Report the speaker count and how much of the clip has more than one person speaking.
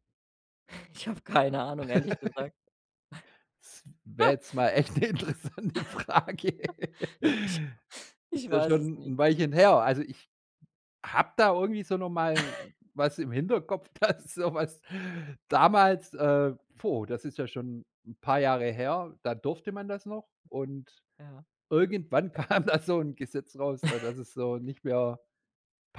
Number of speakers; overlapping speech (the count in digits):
2, about 3%